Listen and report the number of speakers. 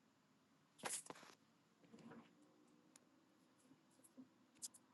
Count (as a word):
zero